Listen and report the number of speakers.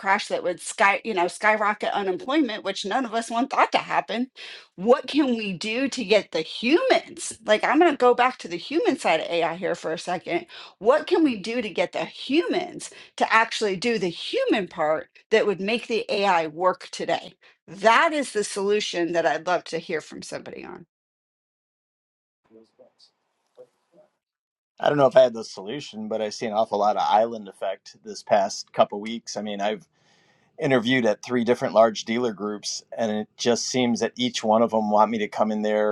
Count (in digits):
2